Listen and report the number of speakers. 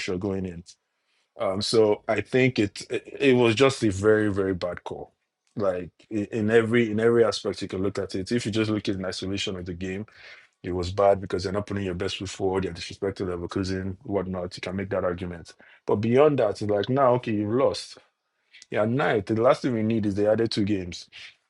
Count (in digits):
1